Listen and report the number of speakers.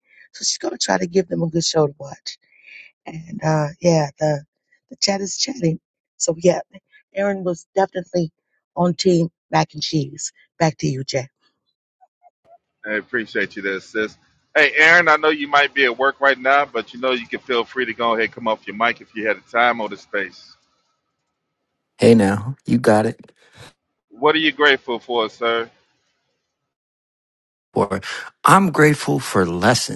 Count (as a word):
three